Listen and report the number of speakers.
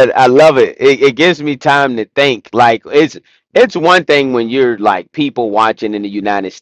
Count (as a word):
one